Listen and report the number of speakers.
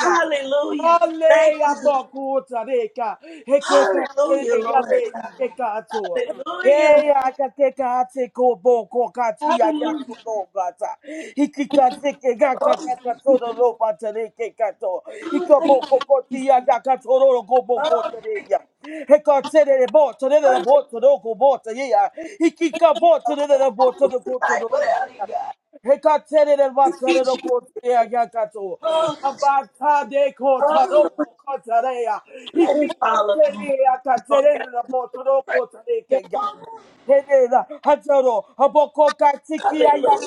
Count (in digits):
2